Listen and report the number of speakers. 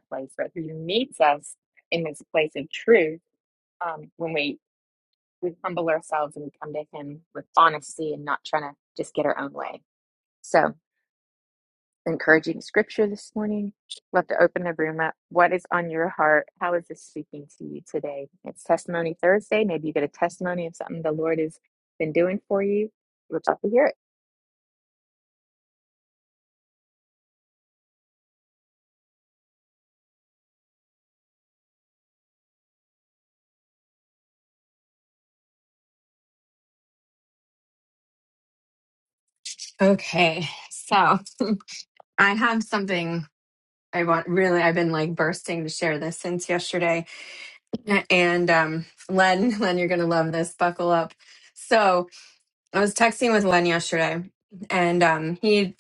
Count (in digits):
2